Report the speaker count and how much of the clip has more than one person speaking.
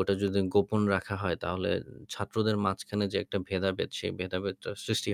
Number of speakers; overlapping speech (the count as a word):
one, no overlap